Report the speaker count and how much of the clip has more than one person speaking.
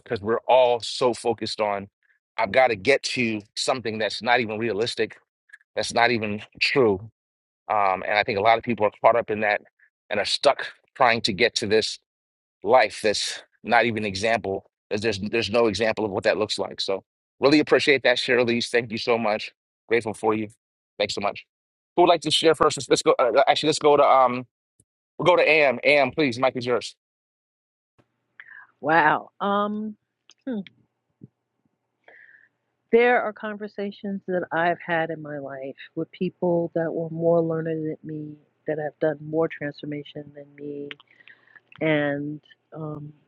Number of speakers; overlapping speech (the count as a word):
two, no overlap